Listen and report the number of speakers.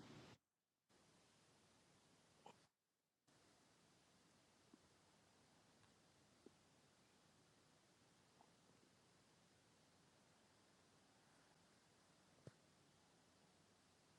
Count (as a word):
zero